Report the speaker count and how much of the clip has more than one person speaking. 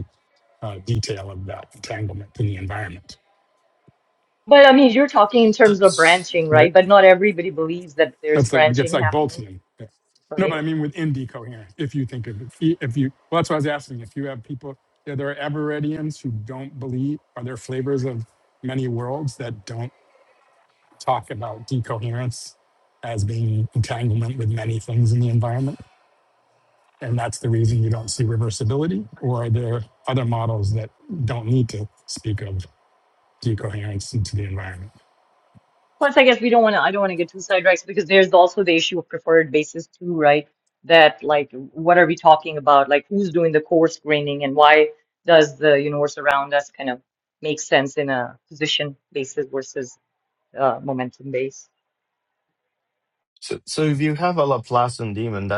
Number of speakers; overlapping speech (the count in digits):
3, about 2%